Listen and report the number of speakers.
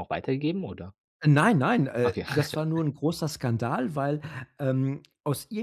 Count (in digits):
2